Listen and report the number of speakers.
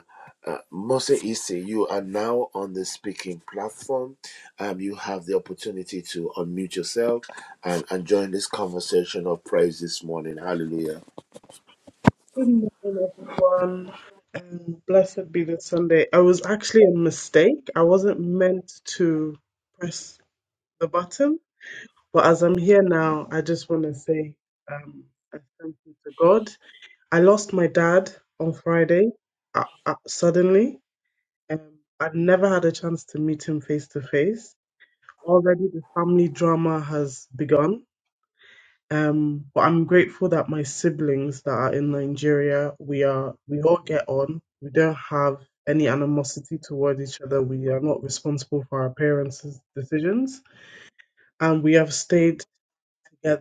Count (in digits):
2